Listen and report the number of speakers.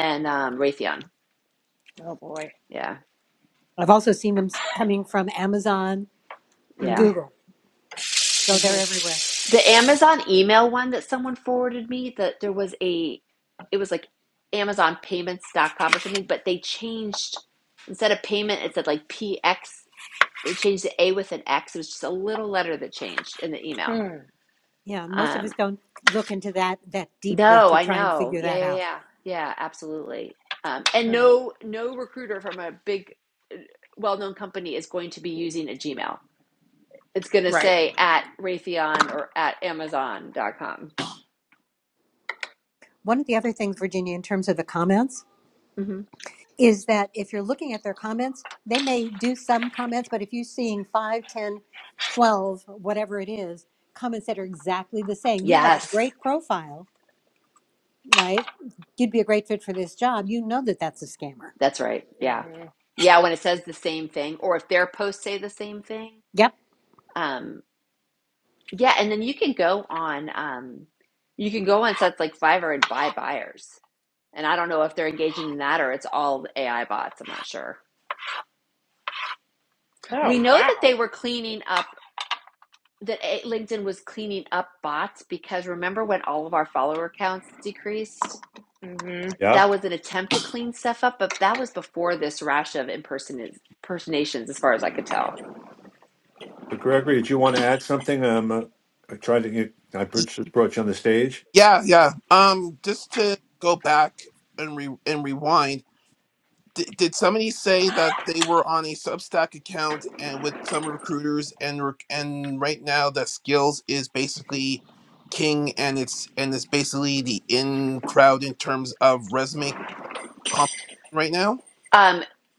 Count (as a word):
five